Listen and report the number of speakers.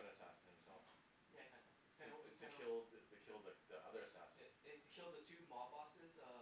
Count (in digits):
2